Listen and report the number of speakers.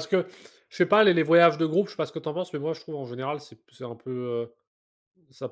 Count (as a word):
one